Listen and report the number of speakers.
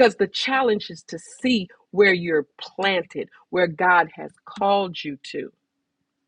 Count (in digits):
1